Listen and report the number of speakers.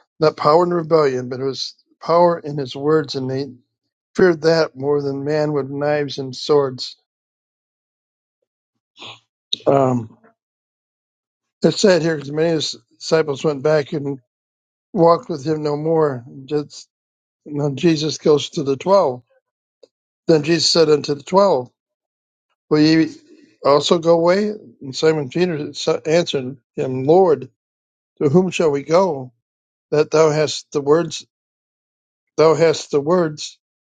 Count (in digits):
1